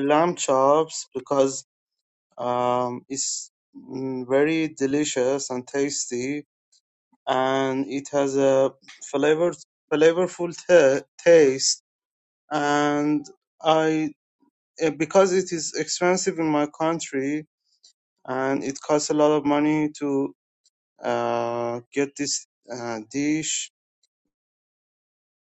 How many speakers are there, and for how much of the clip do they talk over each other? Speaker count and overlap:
1, no overlap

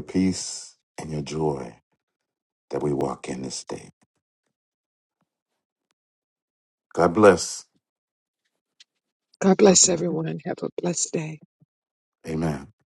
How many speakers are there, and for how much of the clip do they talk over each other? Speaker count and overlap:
2, about 2%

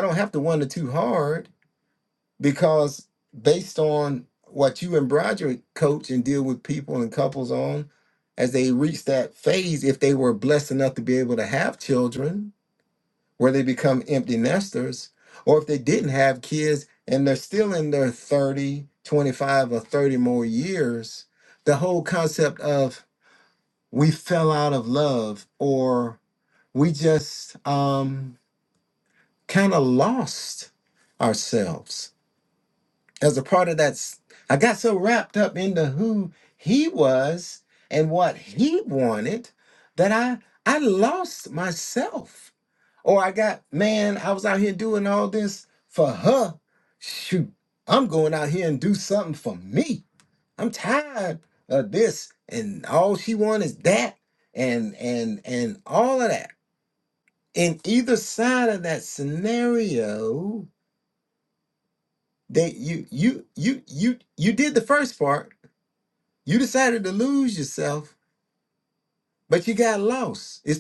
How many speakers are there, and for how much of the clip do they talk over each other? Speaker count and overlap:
1, no overlap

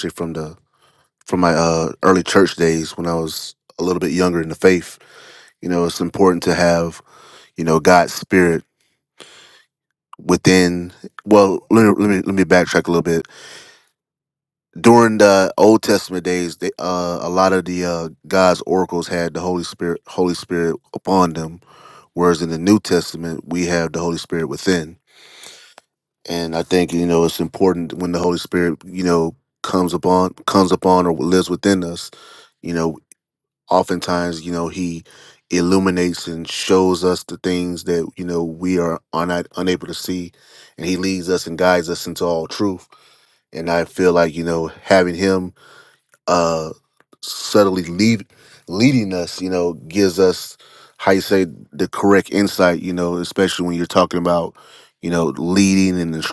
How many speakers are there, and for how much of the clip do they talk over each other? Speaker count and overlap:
1, no overlap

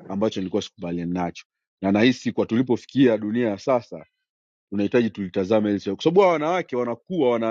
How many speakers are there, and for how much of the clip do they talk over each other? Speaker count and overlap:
1, no overlap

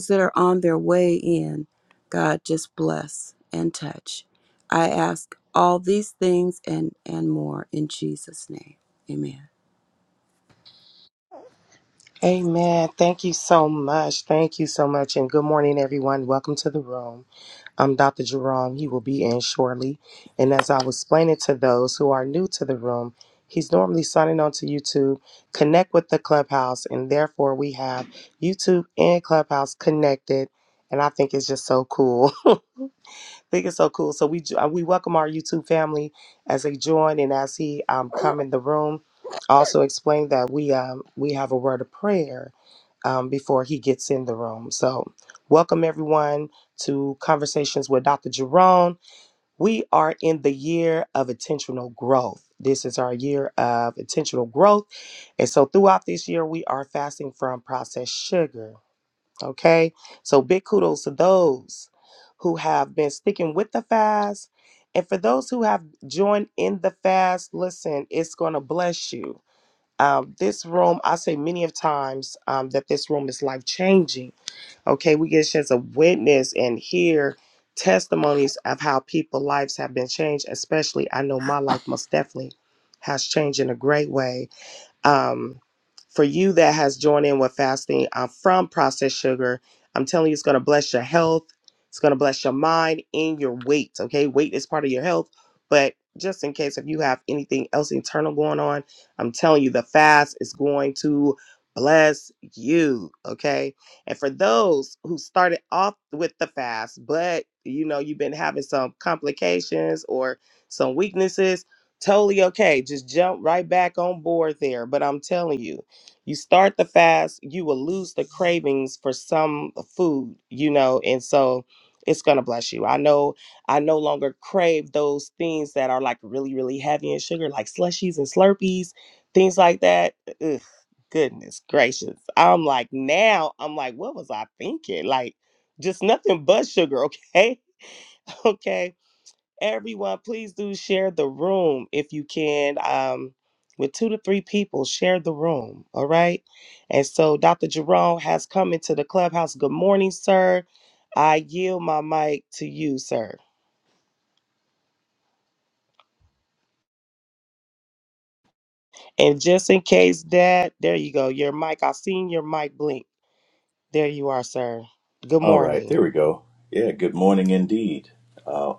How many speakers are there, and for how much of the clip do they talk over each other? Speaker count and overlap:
3, under 1%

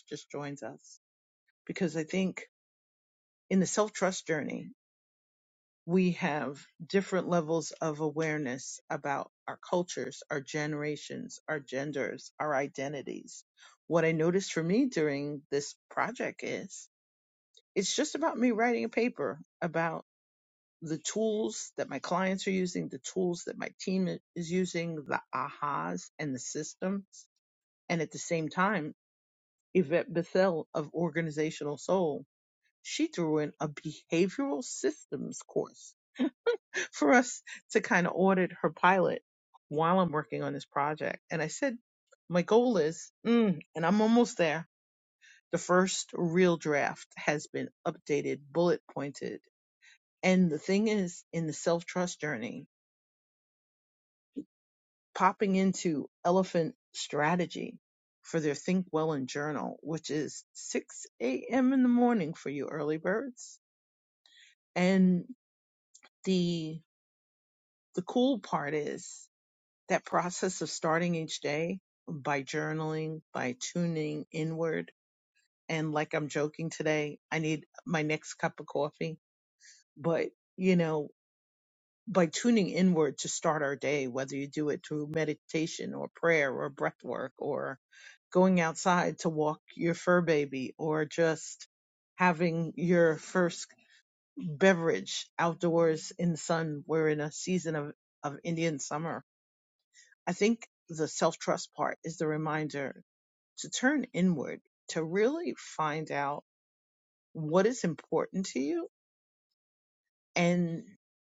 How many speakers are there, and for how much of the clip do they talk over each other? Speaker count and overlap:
1, no overlap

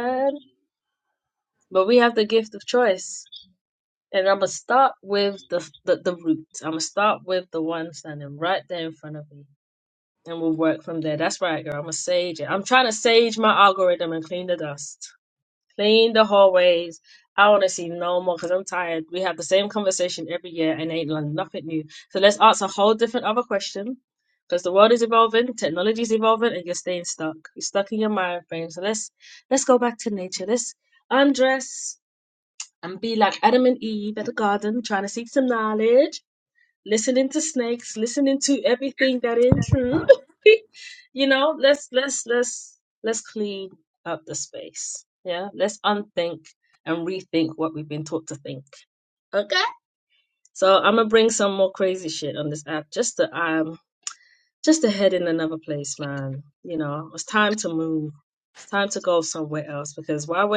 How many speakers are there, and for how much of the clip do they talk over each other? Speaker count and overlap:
1, no overlap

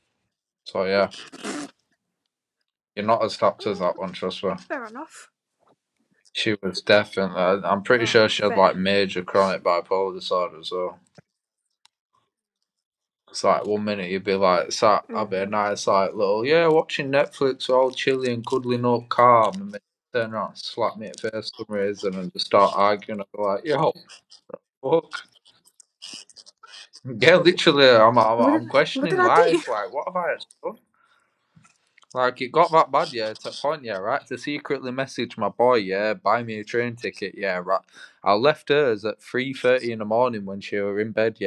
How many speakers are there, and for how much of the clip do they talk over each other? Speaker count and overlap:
2, about 7%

